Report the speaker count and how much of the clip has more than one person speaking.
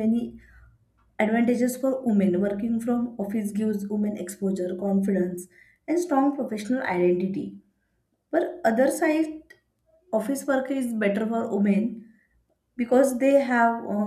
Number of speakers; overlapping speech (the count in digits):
1, no overlap